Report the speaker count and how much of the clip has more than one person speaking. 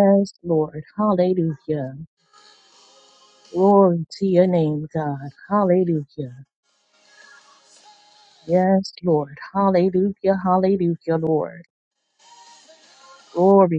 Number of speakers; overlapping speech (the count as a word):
one, no overlap